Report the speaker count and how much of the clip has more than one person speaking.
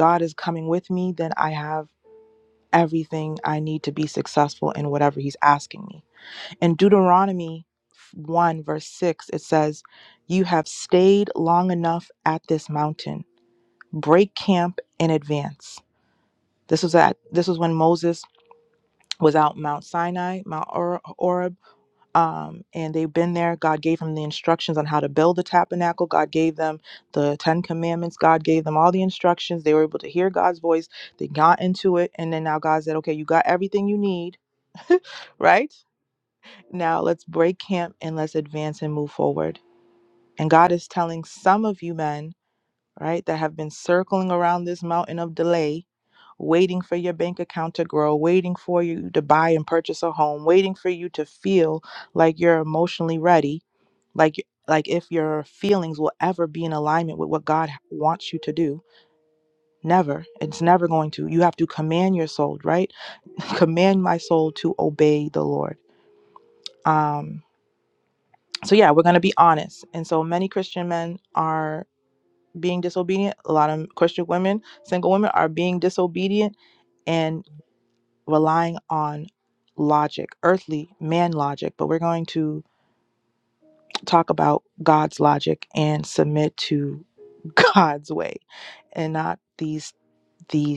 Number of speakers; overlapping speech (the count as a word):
one, no overlap